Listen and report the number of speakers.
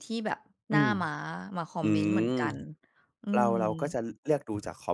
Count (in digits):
2